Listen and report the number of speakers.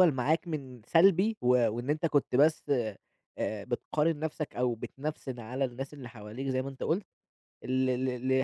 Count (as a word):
one